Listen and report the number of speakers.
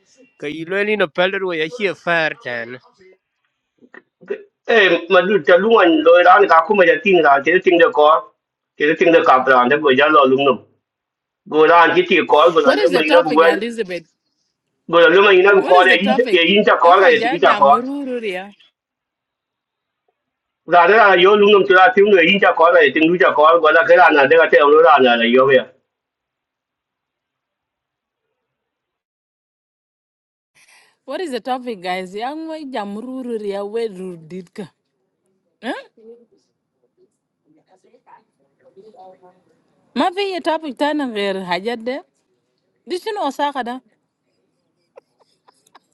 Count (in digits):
3